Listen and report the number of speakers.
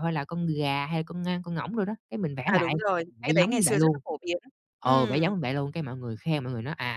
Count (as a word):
two